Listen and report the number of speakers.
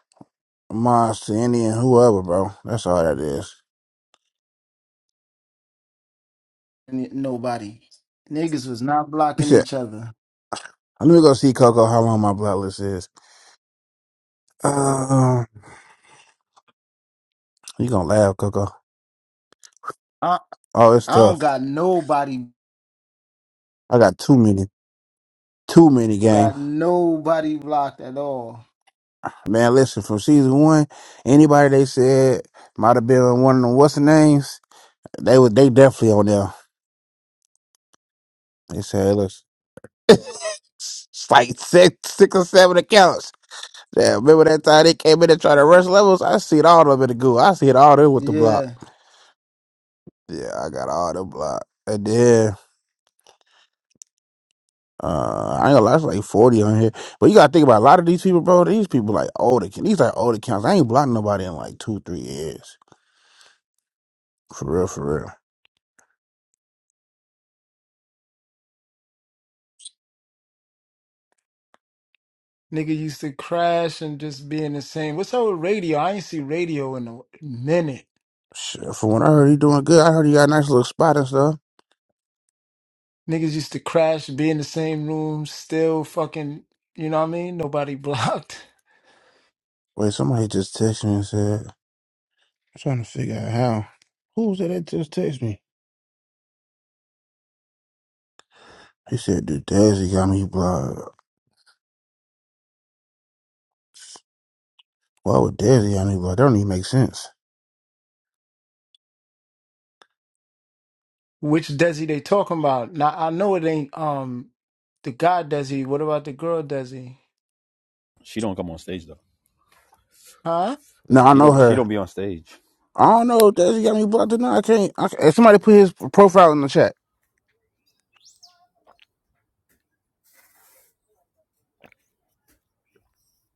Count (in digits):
3